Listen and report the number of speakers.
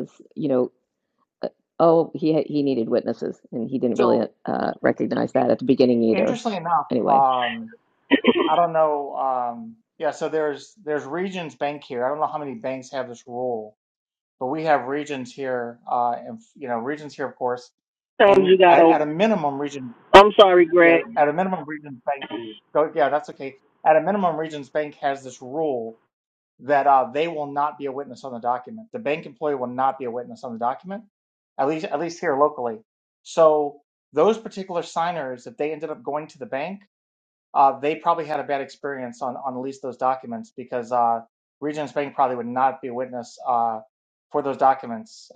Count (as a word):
three